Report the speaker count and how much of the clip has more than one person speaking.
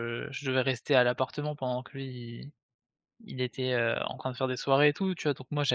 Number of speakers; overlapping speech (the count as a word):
one, no overlap